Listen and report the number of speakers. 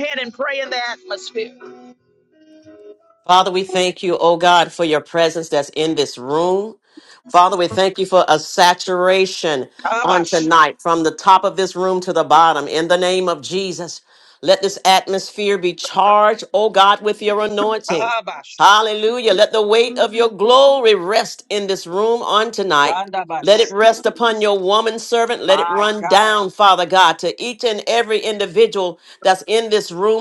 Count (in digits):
2